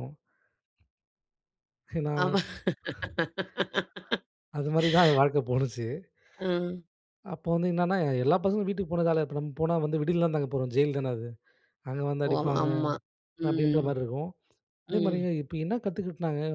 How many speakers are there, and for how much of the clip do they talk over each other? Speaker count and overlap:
2, about 7%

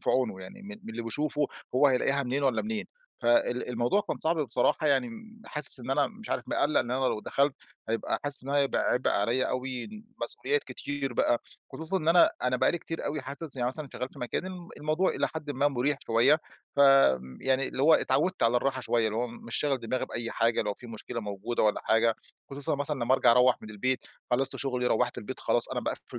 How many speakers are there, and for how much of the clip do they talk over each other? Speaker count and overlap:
1, no overlap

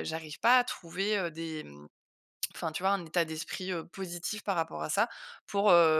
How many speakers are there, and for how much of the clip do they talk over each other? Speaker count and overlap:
1, no overlap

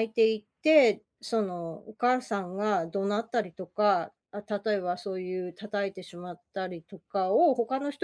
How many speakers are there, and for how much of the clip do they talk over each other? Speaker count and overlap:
1, no overlap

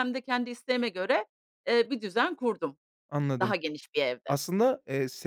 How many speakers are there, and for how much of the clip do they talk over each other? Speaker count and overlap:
2, about 3%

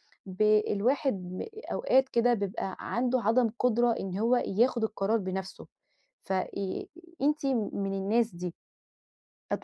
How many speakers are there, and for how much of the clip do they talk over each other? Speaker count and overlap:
1, no overlap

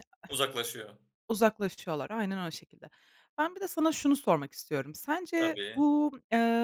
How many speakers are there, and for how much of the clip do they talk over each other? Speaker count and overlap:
2, about 6%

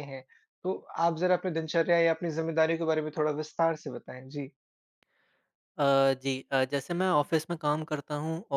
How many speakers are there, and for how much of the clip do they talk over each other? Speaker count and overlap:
2, no overlap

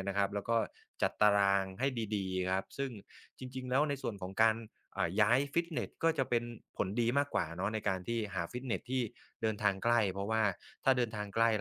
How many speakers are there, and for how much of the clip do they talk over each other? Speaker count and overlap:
1, no overlap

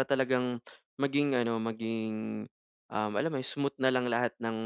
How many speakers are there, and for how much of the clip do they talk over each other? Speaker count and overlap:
1, no overlap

